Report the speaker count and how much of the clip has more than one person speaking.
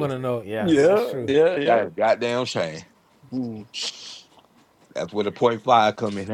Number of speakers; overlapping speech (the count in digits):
3, about 12%